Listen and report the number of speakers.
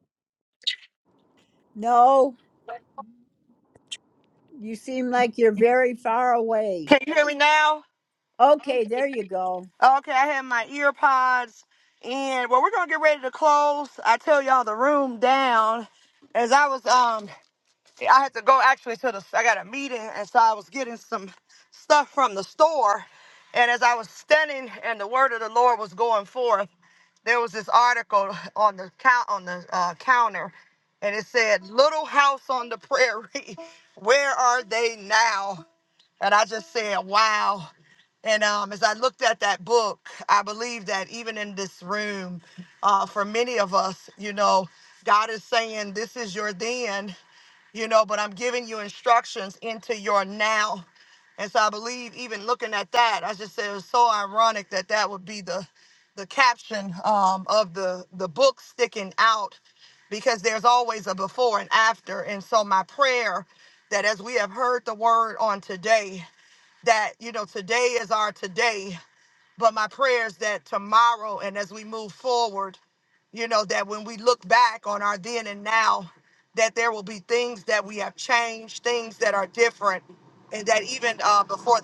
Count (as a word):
two